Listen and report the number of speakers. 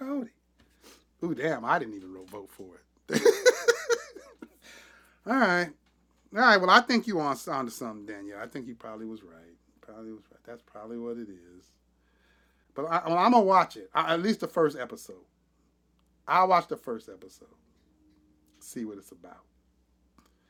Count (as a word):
one